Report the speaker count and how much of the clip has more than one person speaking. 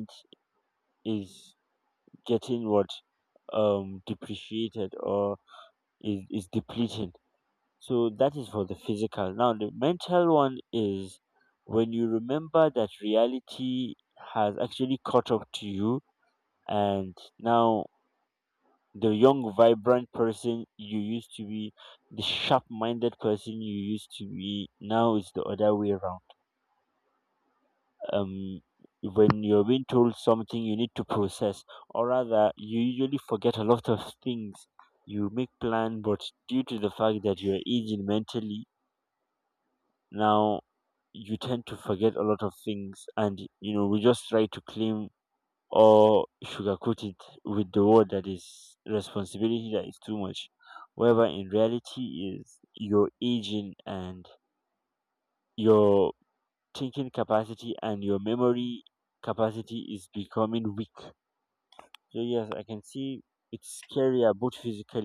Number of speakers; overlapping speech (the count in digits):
1, no overlap